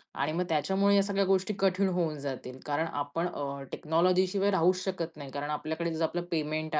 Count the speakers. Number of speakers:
one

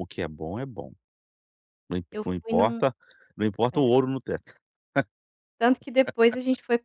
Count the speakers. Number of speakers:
two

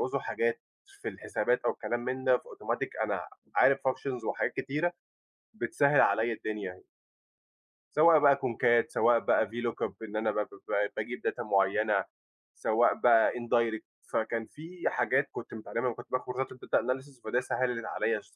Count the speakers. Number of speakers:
one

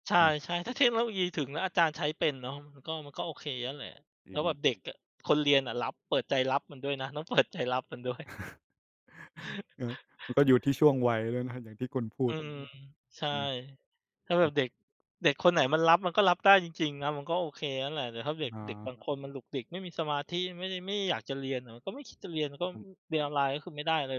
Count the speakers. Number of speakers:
two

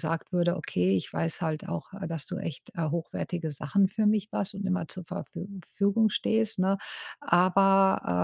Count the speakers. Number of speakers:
one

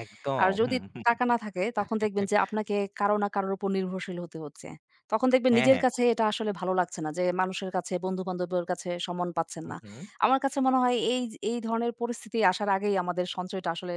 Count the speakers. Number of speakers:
two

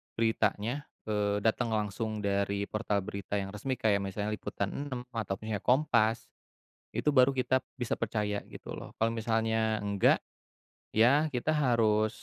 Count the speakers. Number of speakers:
one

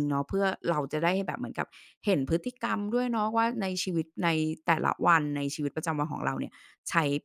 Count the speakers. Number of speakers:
one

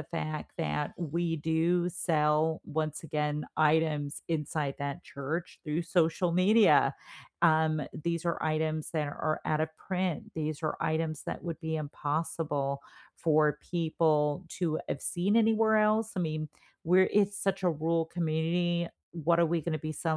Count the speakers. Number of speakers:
one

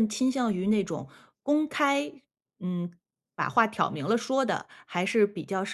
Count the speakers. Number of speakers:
one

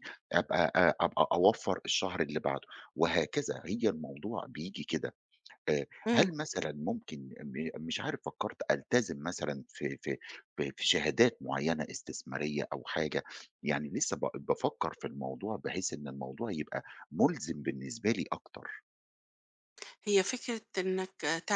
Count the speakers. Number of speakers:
two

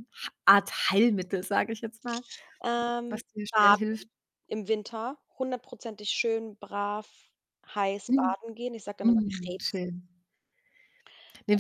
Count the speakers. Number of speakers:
two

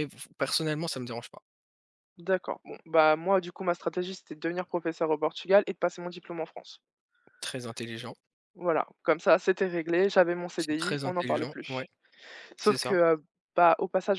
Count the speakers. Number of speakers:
two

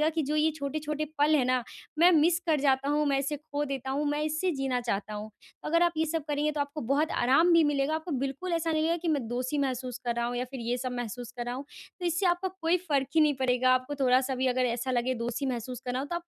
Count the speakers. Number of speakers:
one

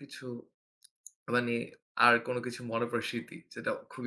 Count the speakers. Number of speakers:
one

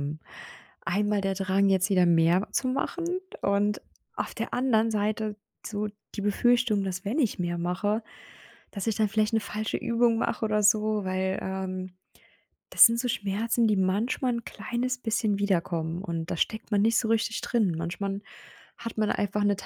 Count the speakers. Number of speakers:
one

